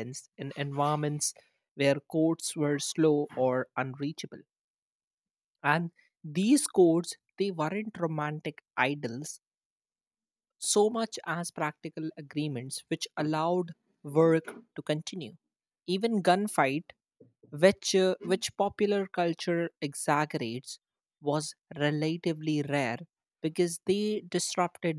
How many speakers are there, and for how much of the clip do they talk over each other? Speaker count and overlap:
one, no overlap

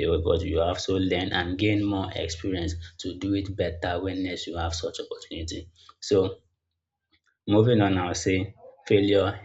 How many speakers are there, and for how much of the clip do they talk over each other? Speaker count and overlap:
one, no overlap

